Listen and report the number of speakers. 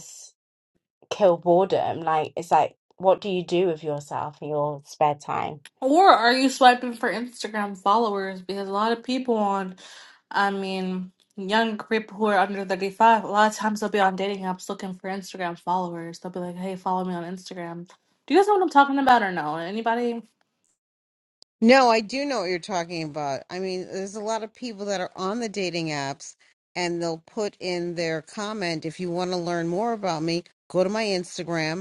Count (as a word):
three